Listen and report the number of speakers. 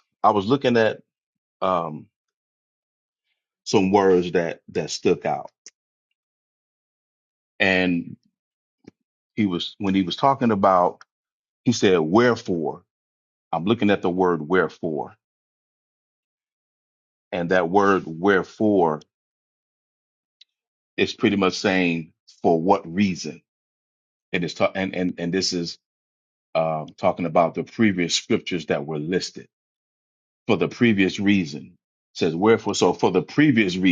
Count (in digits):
1